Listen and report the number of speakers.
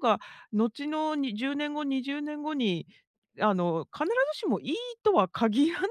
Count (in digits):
1